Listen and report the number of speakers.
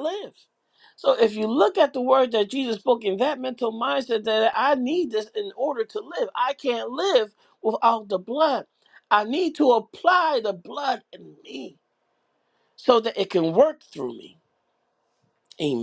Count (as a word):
one